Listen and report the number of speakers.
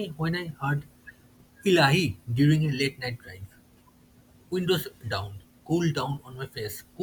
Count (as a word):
one